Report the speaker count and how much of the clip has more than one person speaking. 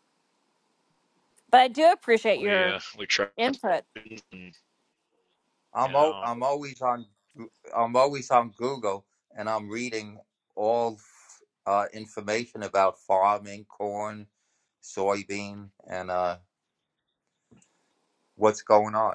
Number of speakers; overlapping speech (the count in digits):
3, about 4%